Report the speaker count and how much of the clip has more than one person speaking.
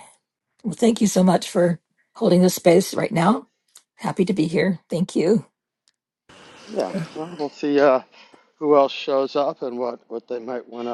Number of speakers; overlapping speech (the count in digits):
2, no overlap